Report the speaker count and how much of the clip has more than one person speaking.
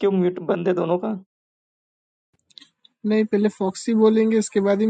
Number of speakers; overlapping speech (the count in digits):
2, no overlap